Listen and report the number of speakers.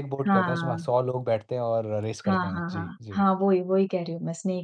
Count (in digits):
2